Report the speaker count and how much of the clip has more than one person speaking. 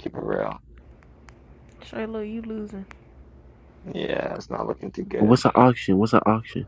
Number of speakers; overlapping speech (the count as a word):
three, about 2%